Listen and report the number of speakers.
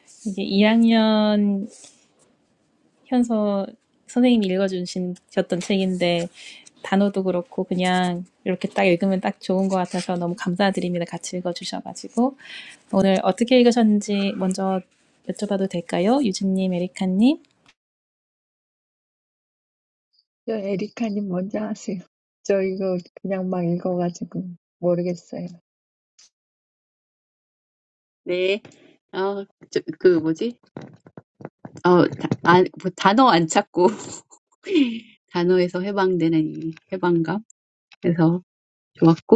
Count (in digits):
3